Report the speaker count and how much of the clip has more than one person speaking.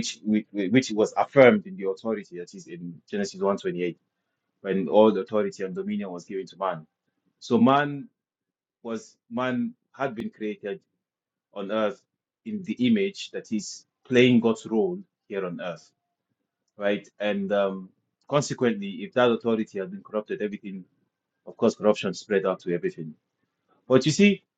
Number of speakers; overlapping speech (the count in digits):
1, no overlap